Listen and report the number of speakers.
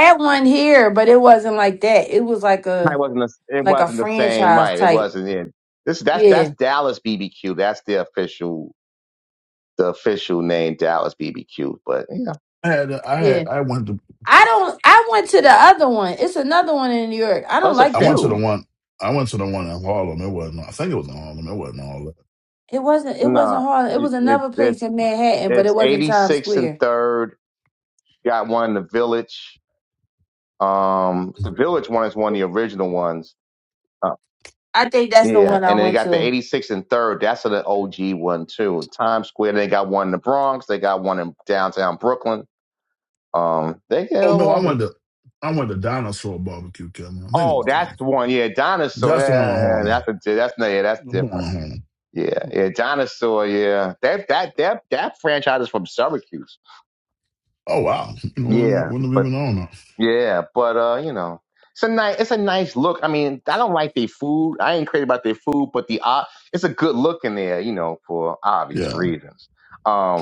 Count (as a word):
three